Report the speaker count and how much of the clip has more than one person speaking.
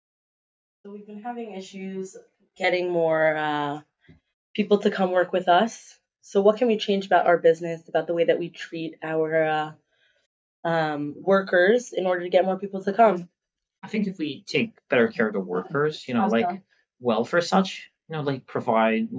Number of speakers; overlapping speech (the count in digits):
2, about 3%